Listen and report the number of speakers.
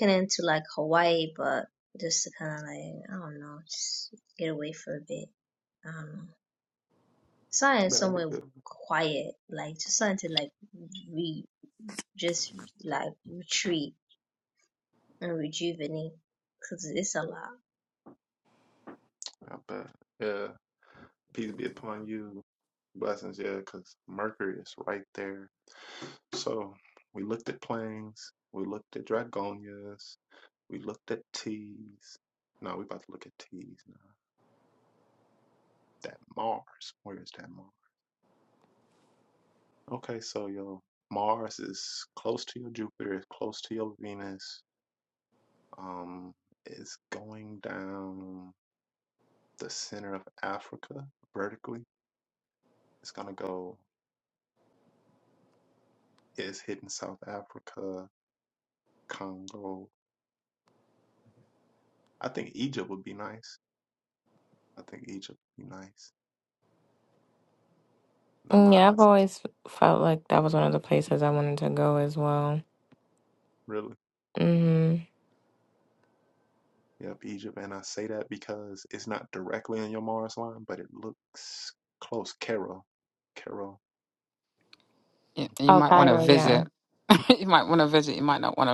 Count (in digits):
4